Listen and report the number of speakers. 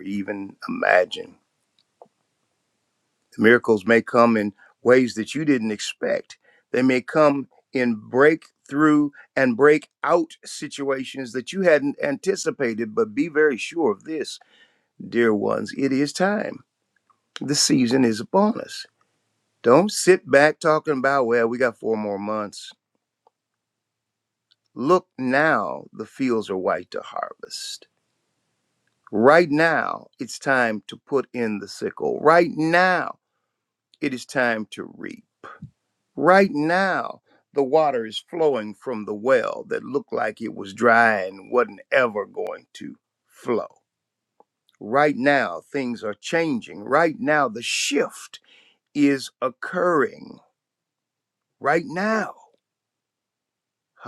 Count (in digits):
1